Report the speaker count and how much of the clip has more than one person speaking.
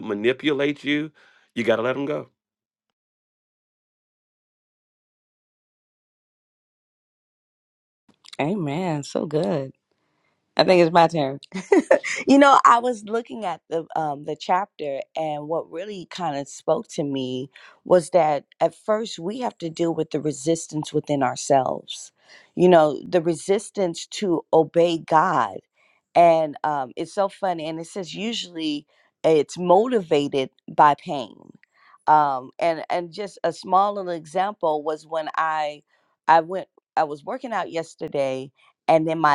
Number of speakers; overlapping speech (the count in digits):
2, no overlap